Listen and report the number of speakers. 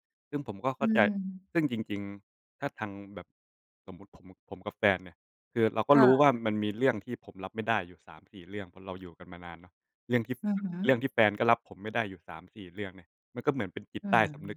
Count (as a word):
two